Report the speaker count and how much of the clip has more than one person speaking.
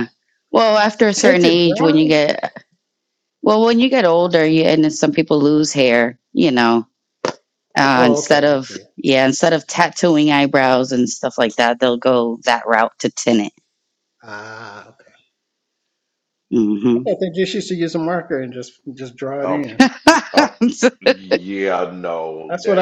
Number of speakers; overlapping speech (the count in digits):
3, about 11%